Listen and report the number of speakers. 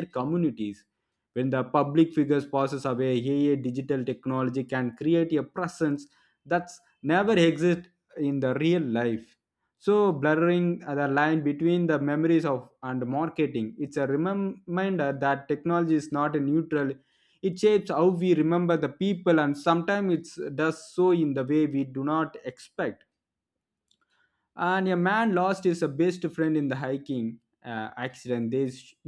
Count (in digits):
1